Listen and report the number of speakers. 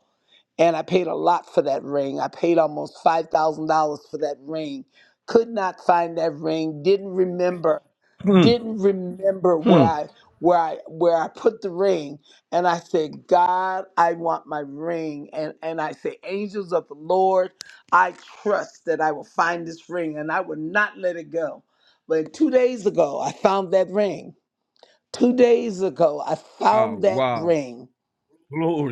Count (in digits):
2